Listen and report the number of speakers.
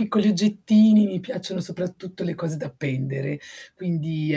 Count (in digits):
1